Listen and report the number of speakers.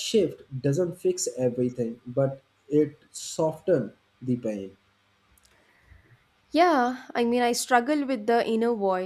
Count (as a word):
two